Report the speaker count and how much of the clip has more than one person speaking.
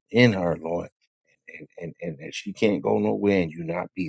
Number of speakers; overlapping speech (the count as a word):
one, no overlap